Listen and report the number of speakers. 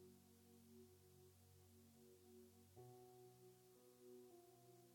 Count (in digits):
0